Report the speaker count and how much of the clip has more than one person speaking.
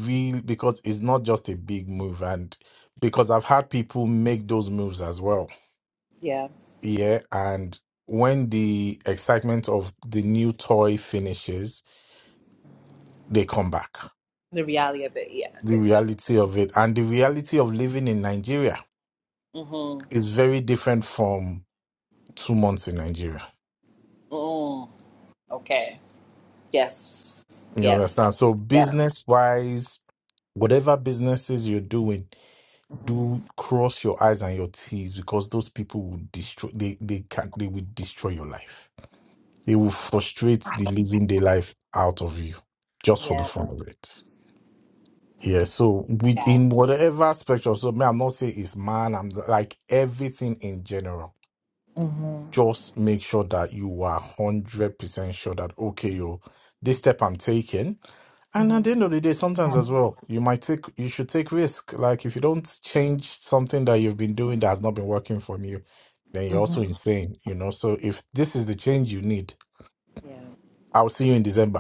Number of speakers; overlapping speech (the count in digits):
2, about 3%